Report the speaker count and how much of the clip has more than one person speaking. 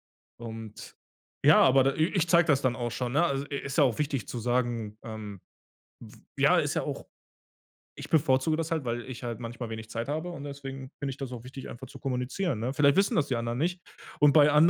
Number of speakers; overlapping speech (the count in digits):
1, no overlap